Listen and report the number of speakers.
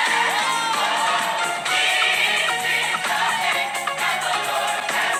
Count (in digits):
0